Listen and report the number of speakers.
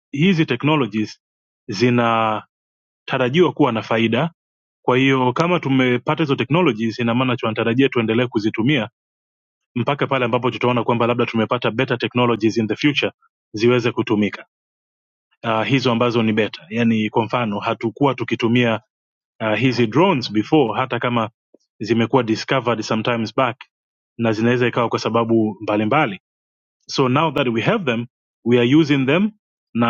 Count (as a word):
one